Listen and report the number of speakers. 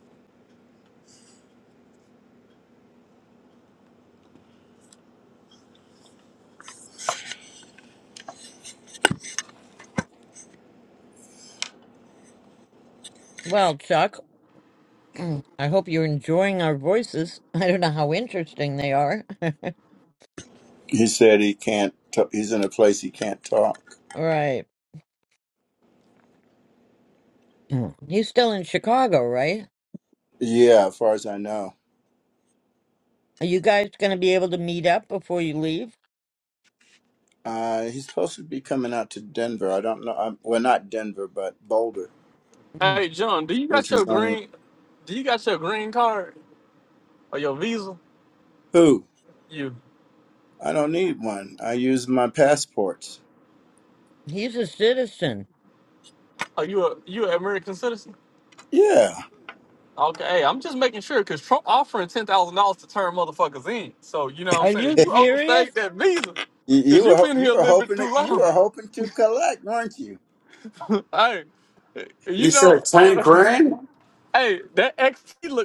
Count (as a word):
four